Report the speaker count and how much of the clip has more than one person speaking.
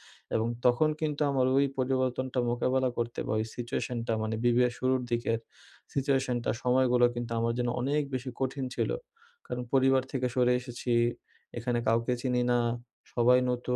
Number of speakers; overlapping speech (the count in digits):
1, no overlap